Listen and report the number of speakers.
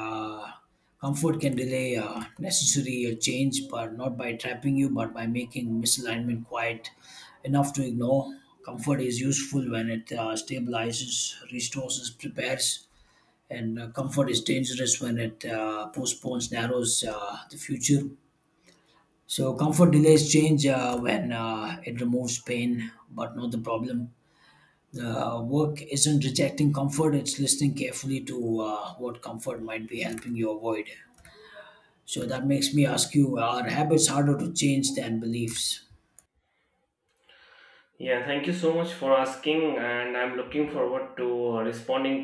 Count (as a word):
two